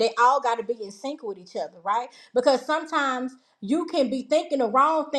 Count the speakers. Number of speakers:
1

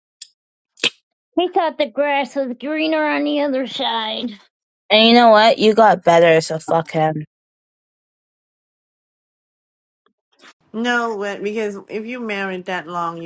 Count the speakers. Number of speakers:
3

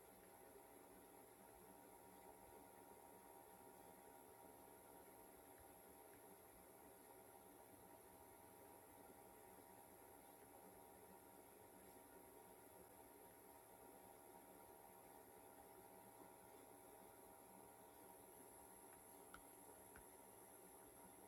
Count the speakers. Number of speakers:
0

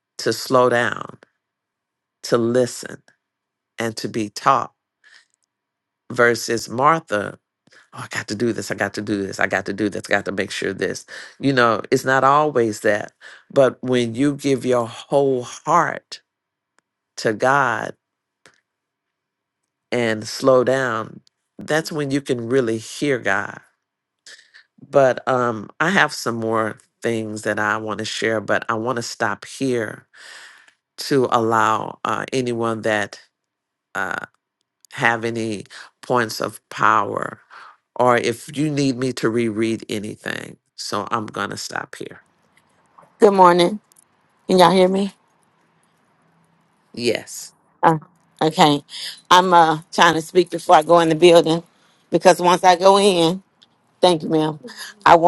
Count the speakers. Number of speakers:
2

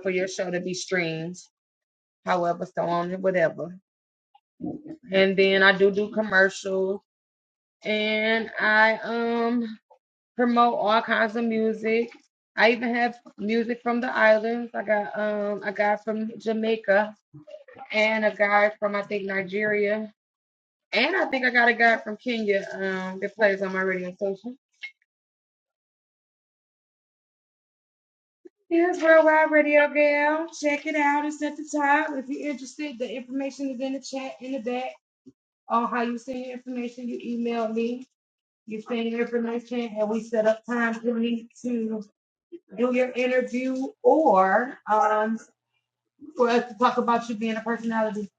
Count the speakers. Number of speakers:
1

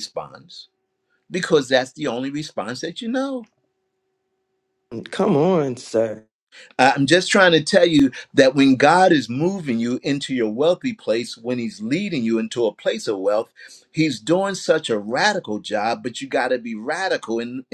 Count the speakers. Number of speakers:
2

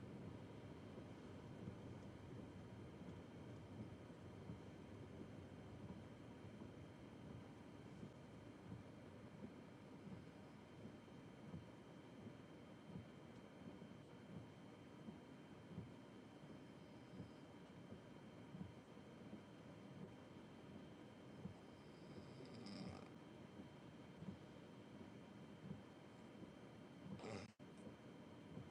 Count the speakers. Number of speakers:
0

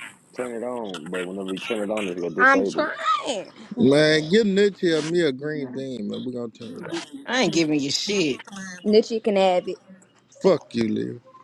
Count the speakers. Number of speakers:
4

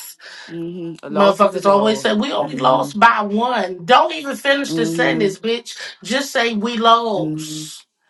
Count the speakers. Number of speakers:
2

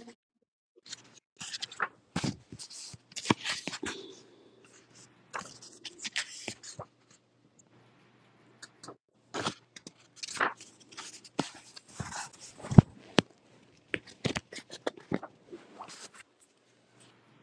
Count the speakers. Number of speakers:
0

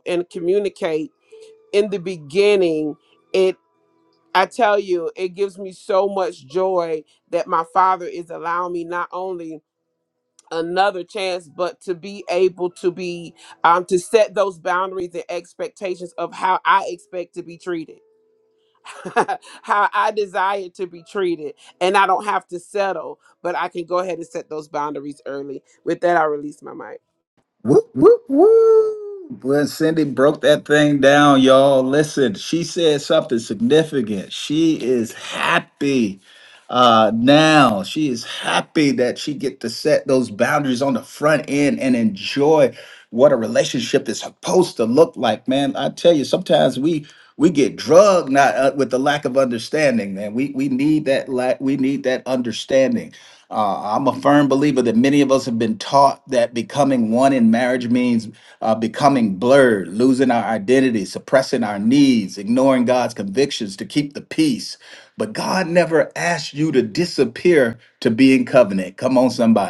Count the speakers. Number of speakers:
2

